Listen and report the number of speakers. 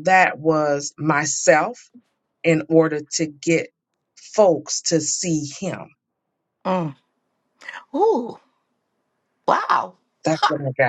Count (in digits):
2